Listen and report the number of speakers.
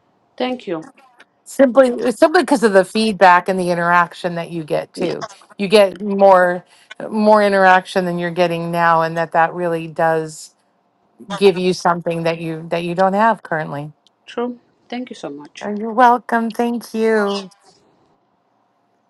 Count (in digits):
2